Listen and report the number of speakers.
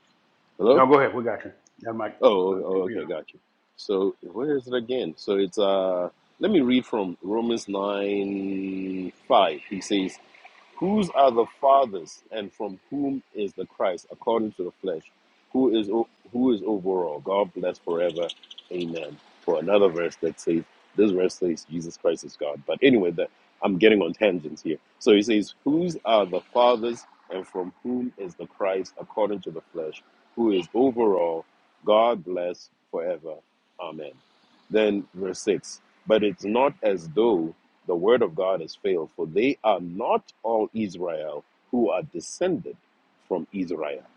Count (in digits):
2